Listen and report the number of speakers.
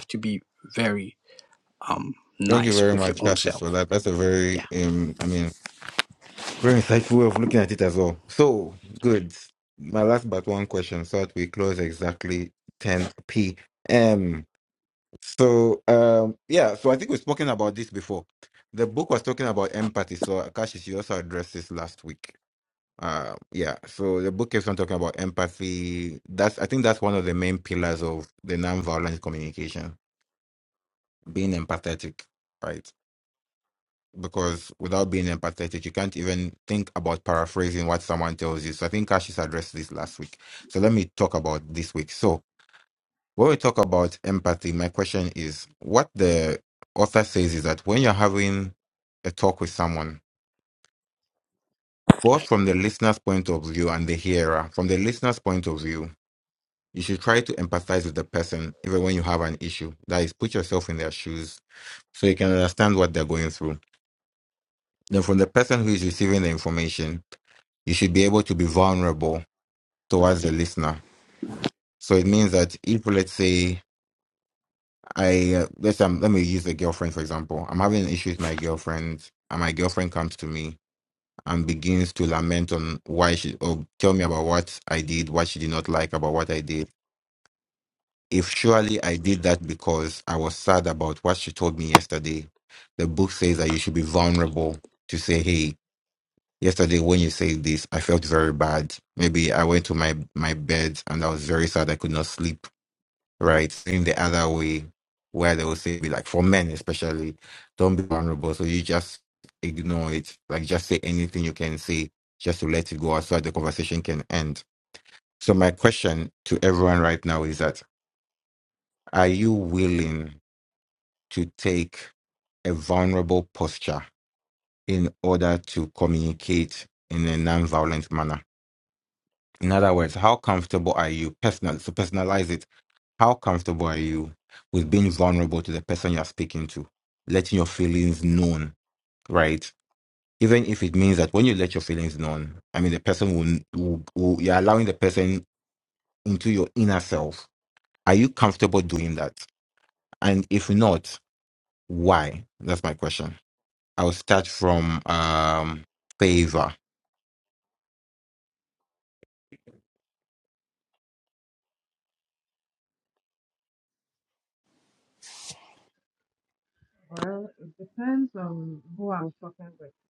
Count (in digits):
3